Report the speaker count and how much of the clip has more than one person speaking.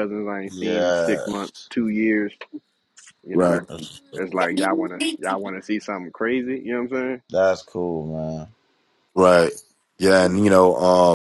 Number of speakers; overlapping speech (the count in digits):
3, about 9%